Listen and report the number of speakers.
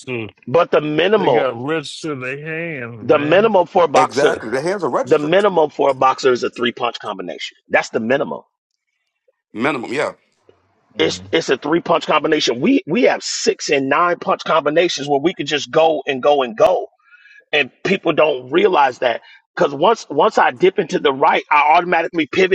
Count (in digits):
3